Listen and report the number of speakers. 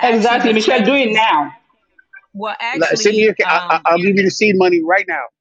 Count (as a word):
three